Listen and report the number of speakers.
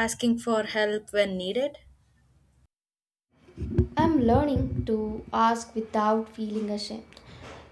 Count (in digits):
2